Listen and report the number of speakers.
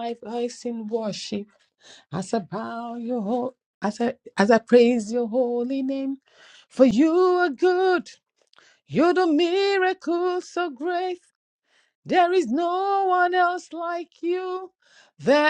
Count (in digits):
1